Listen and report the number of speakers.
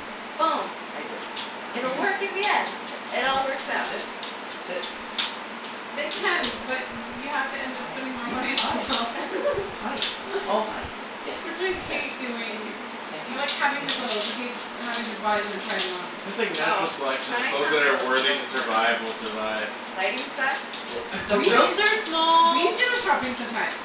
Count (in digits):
4